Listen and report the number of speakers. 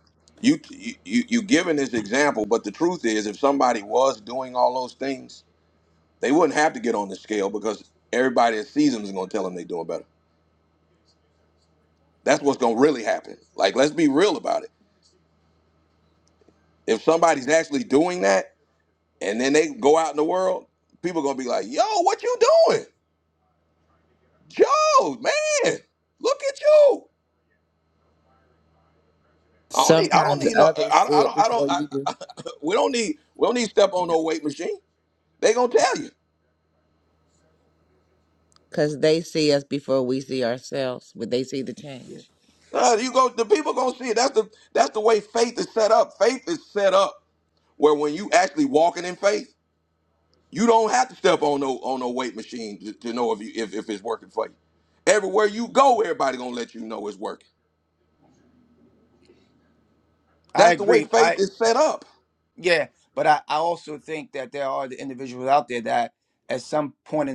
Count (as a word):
three